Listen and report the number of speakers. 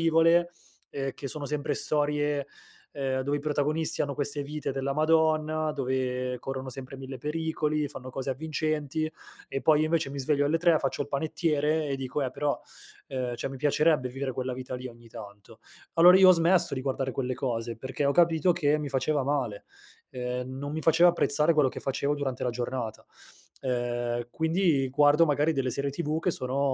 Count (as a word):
one